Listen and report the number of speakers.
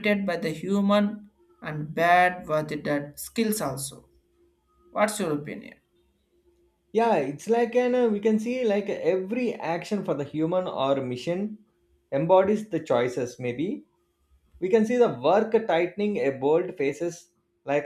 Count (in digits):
2